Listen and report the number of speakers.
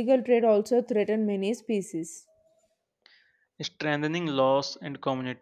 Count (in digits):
2